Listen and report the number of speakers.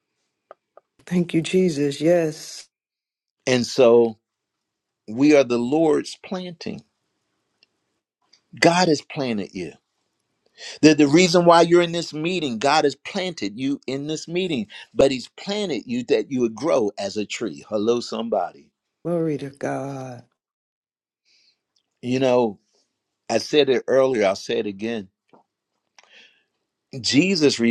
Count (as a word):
two